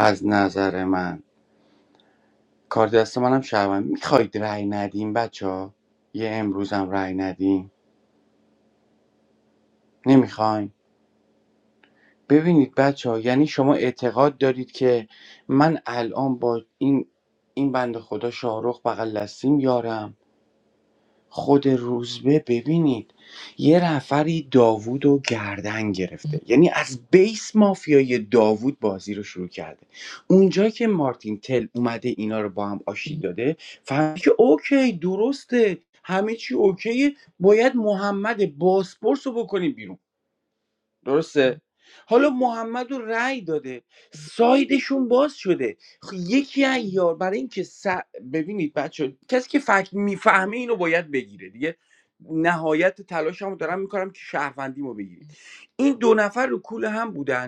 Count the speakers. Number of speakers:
one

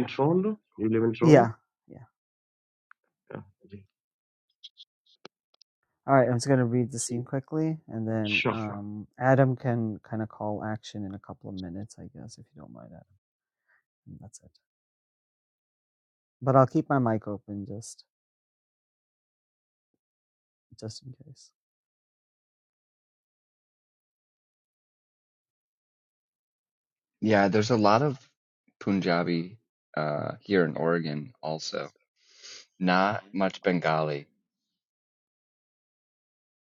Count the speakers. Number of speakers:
three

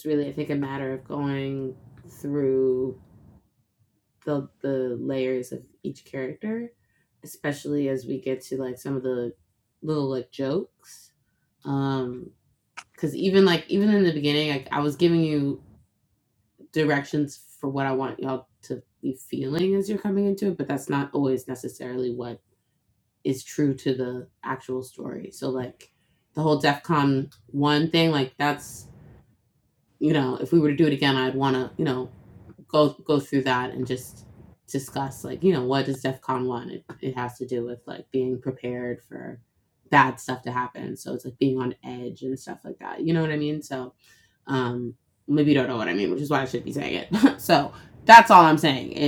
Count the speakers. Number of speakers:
one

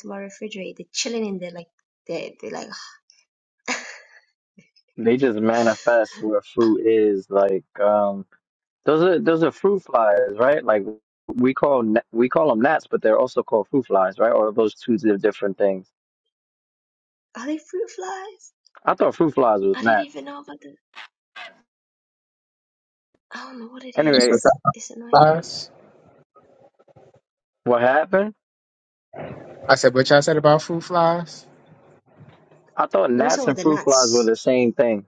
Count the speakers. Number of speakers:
three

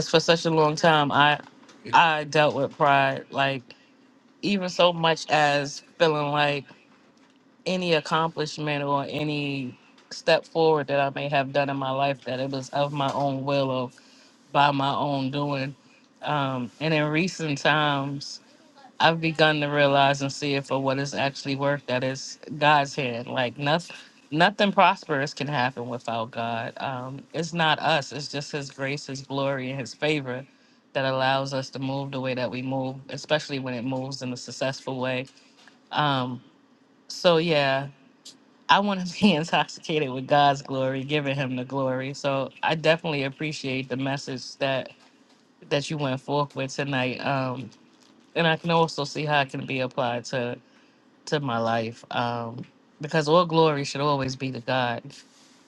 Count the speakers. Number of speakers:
one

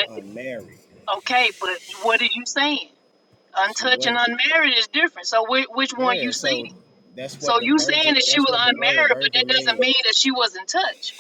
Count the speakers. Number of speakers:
two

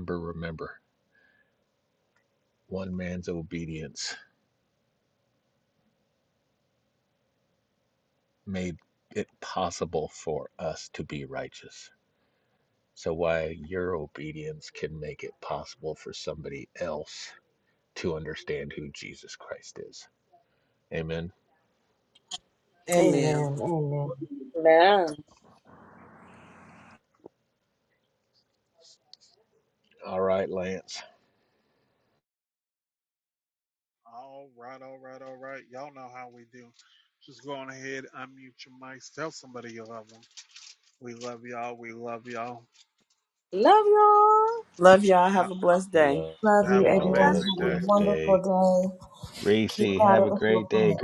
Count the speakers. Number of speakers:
five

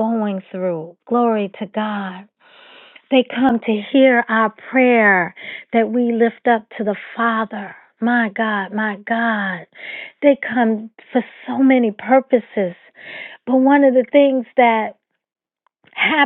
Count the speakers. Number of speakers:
one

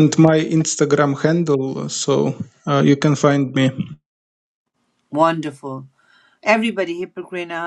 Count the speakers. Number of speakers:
two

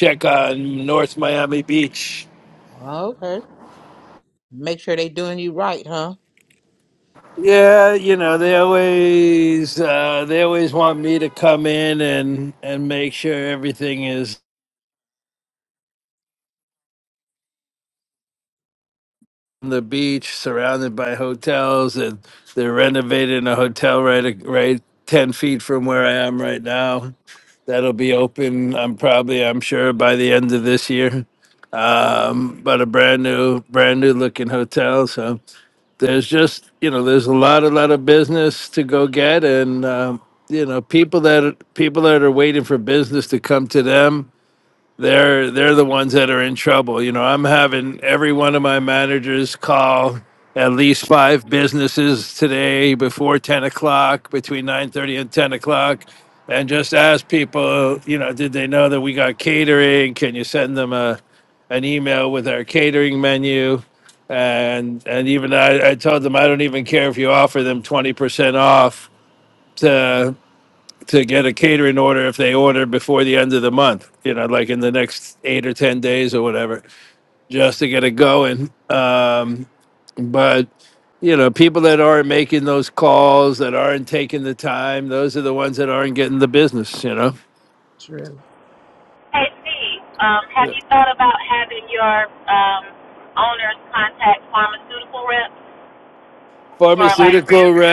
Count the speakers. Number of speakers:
three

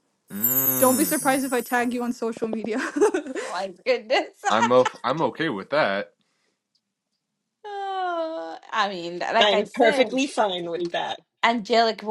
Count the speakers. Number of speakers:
four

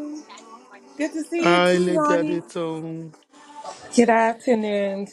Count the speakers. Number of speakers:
three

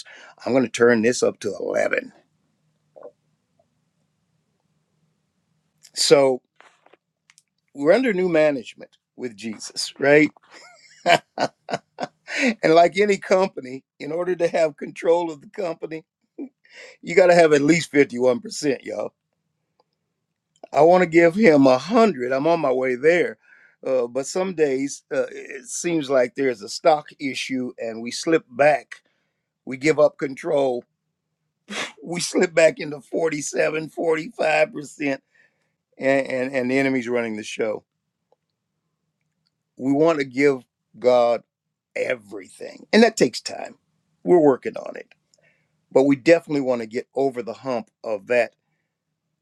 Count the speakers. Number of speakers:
one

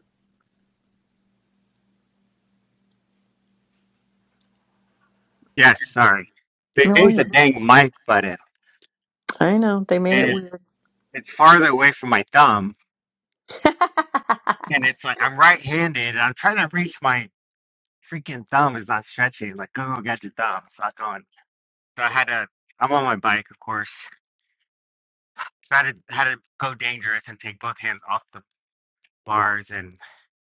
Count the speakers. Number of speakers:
two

